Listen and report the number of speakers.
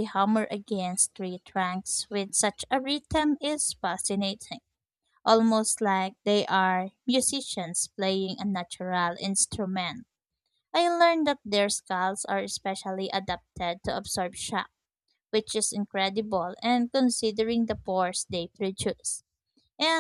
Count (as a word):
one